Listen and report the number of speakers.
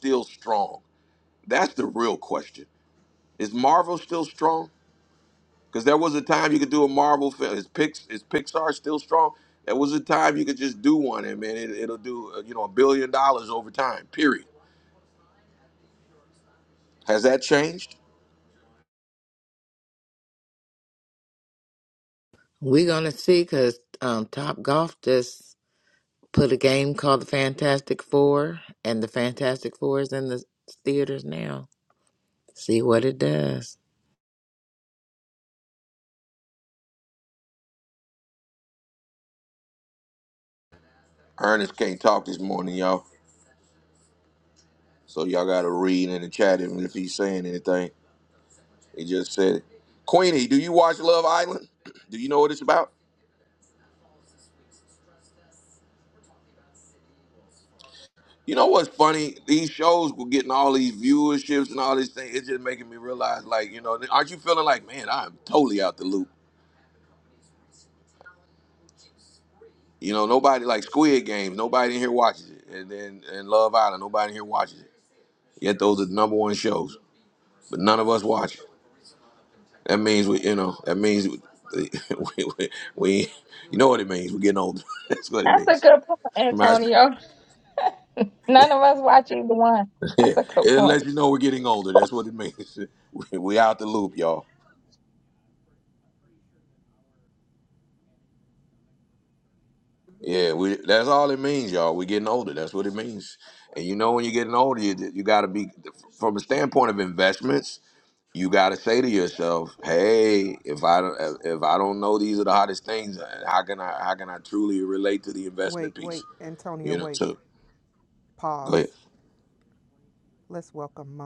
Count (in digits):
4